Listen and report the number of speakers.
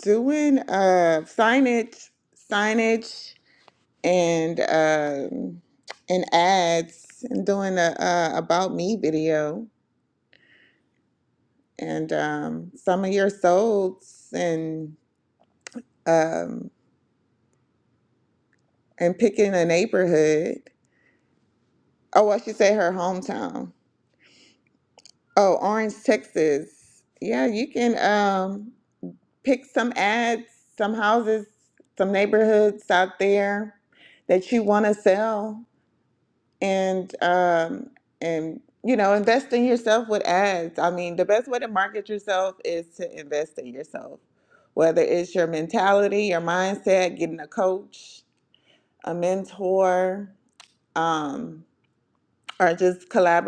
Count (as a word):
one